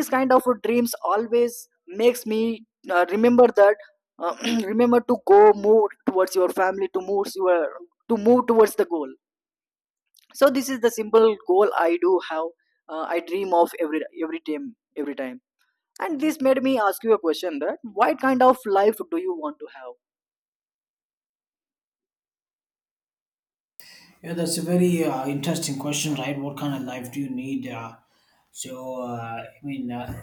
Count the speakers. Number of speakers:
2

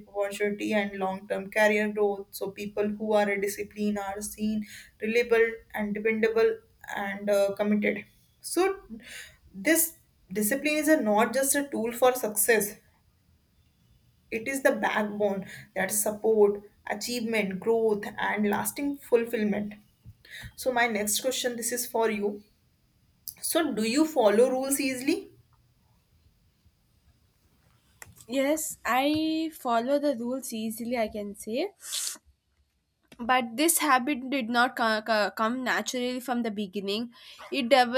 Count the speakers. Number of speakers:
2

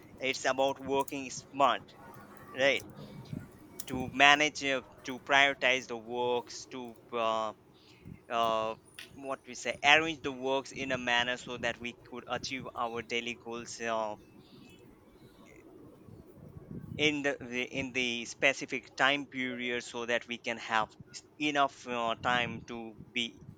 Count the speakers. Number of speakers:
1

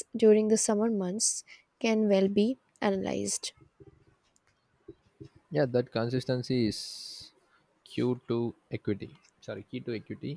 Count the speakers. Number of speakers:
2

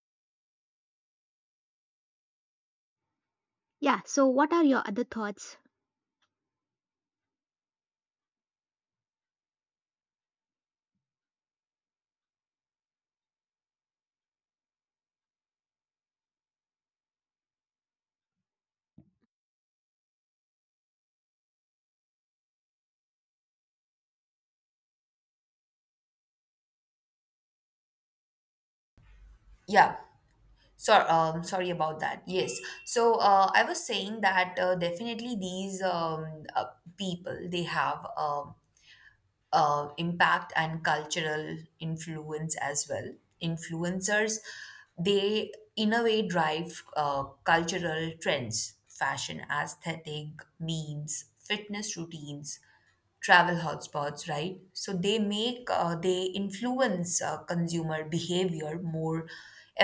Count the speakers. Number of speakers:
2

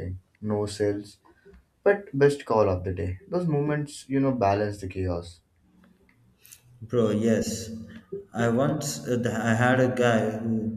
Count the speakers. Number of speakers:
2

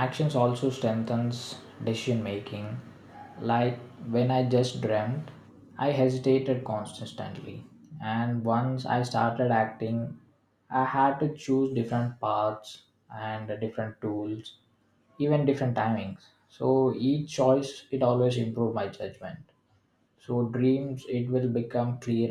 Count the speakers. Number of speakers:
1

